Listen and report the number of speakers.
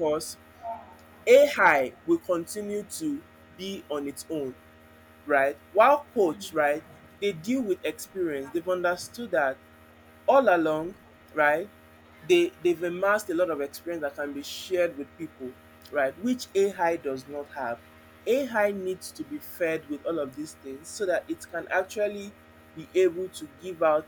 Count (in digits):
1